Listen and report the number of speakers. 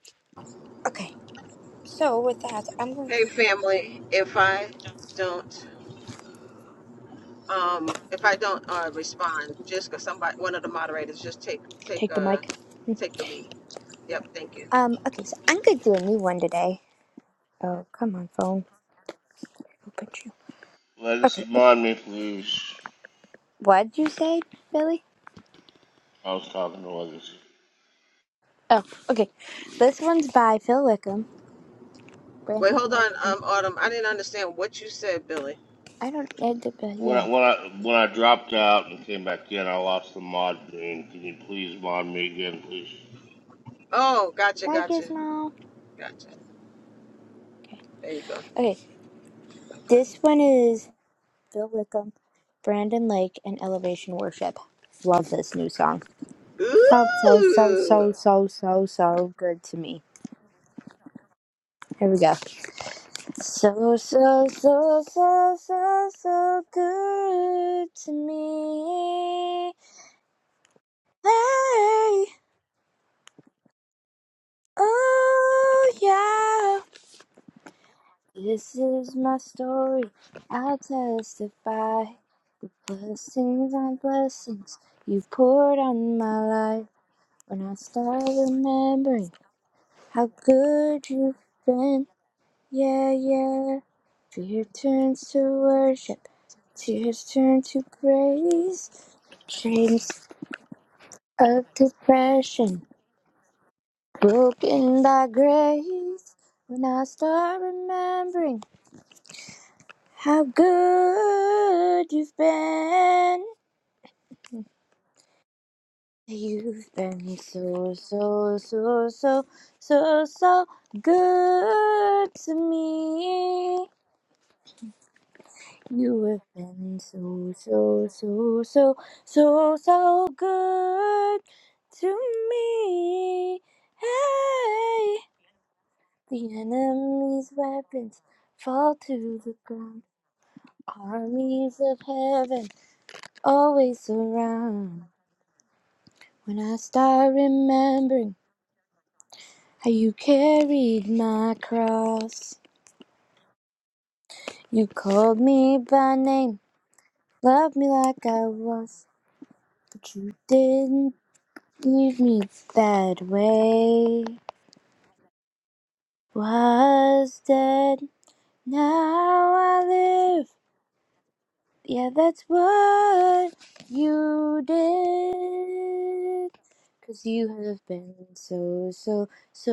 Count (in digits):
3